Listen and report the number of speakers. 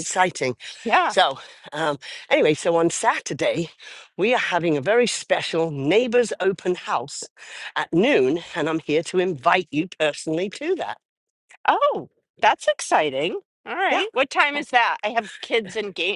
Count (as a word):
two